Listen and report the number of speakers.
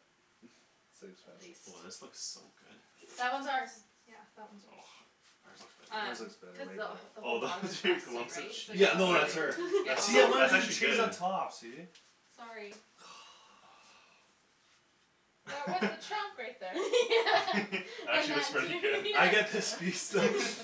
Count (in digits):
4